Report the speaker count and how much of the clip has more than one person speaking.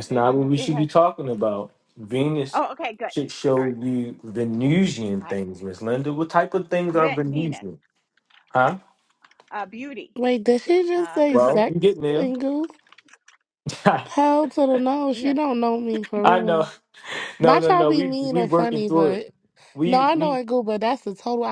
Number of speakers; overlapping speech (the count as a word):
three, about 26%